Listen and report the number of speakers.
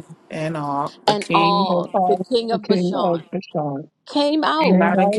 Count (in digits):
3